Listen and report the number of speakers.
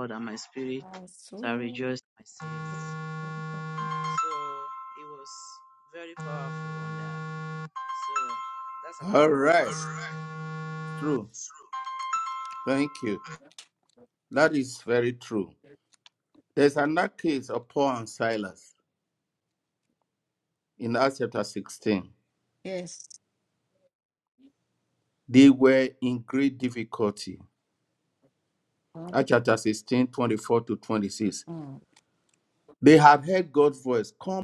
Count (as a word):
three